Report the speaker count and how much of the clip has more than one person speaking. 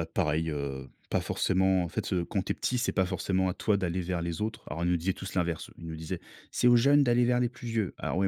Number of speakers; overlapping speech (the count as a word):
one, no overlap